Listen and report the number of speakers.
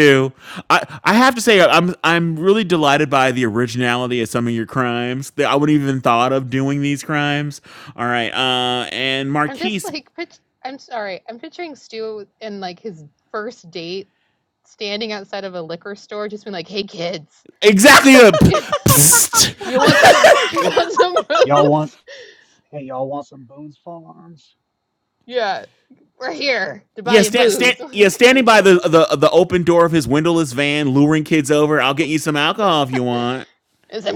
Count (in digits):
3